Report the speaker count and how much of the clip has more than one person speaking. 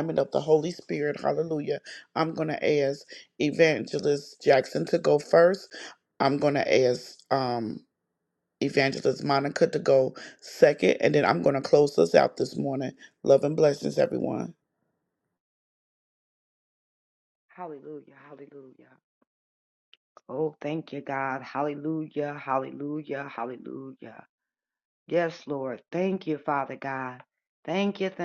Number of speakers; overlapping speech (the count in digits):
2, no overlap